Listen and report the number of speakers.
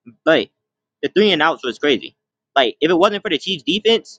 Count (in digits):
1